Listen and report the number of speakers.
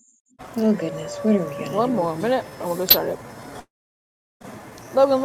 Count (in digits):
2